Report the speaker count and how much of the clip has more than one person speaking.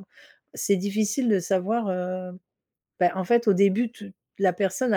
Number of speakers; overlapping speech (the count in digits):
1, no overlap